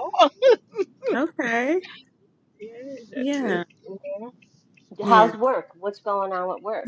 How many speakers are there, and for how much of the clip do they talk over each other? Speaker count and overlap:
3, about 12%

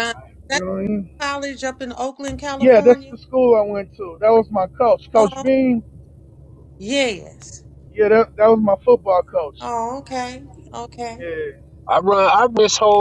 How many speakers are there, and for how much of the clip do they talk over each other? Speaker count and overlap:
3, about 8%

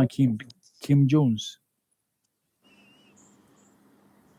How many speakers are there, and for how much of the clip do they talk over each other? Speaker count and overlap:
1, no overlap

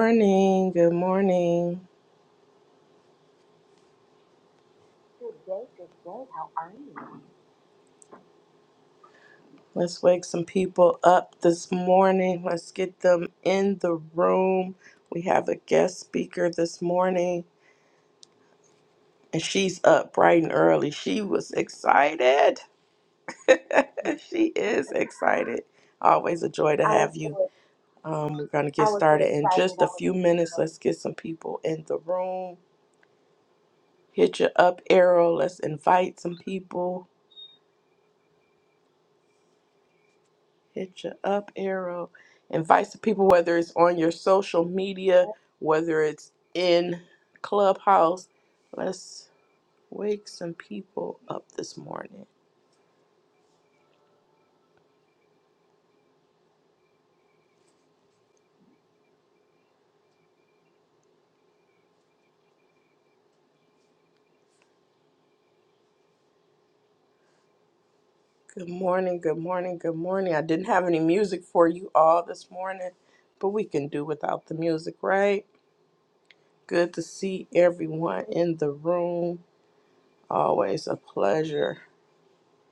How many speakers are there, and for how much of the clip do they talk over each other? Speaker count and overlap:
2, about 2%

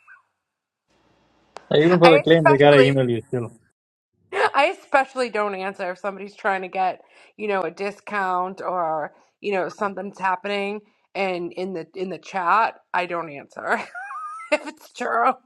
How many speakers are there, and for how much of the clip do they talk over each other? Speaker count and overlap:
2, about 6%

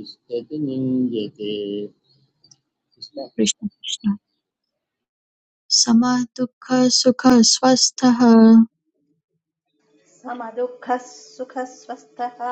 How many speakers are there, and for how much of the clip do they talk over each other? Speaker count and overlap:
3, about 1%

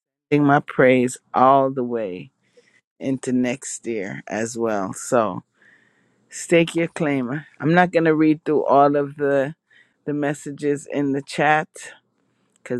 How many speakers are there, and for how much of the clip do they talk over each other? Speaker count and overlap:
1, no overlap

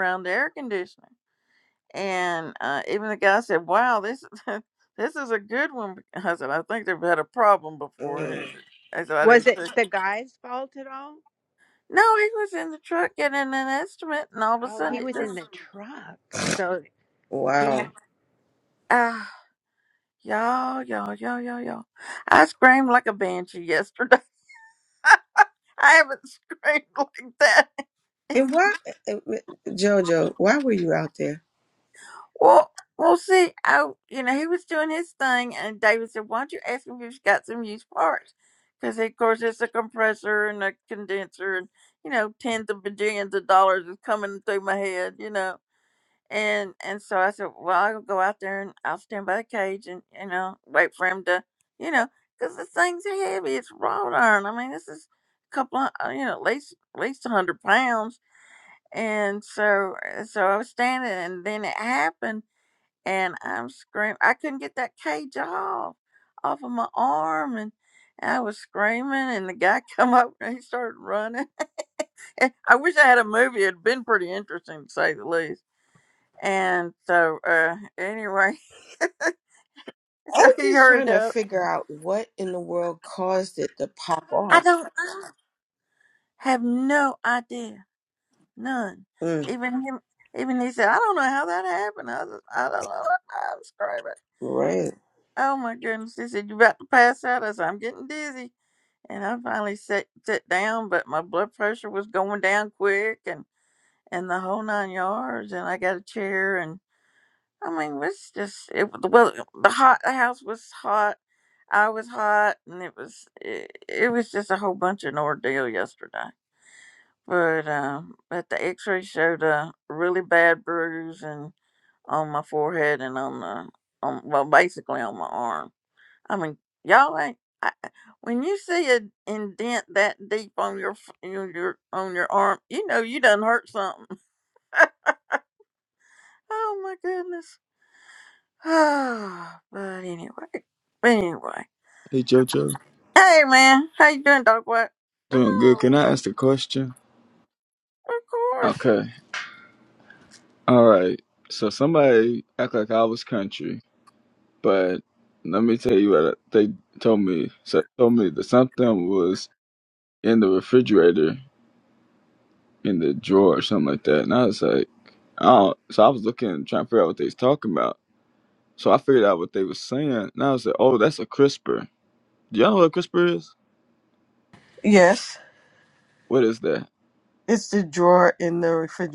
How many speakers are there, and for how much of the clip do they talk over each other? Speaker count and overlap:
4, about 2%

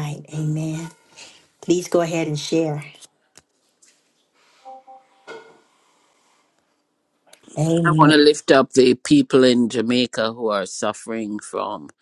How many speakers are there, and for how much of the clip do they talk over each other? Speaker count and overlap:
2, about 3%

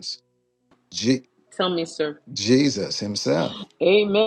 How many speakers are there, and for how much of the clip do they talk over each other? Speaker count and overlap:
2, no overlap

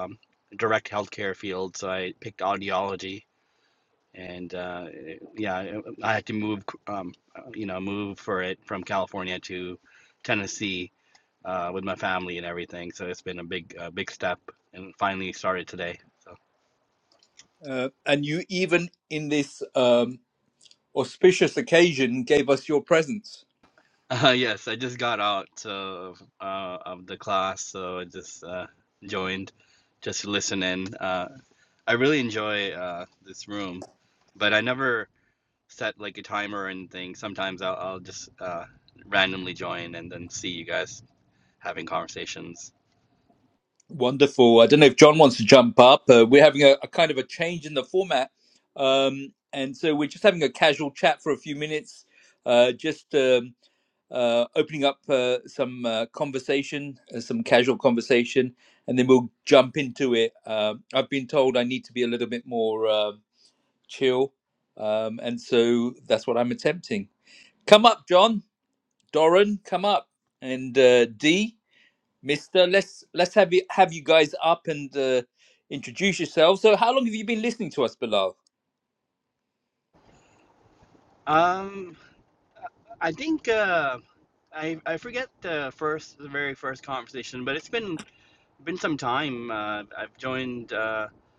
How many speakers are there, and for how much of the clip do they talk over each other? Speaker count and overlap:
2, no overlap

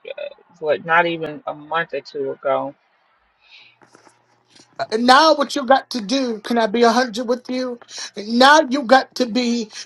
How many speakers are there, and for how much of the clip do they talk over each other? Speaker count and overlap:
2, no overlap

